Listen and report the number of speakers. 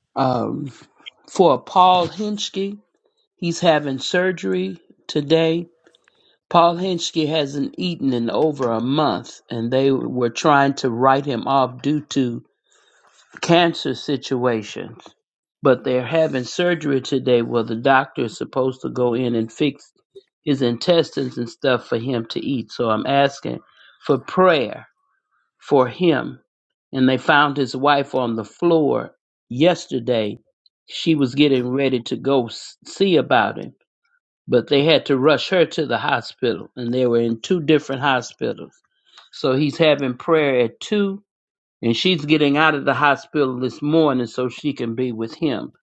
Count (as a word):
one